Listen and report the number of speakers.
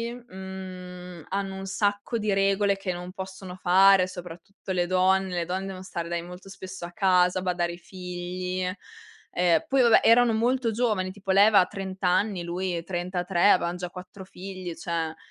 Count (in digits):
1